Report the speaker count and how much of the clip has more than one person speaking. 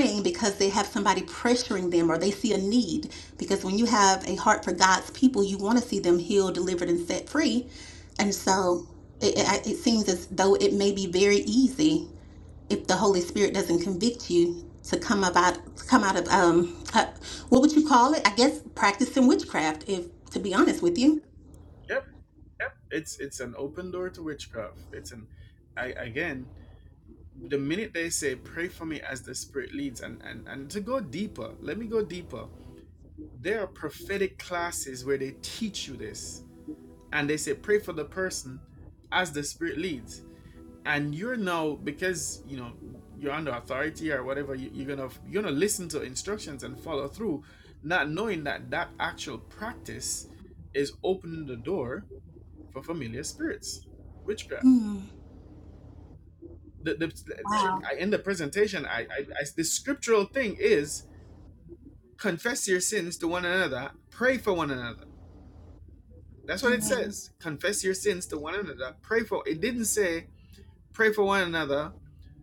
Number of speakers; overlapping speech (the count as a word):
two, about 1%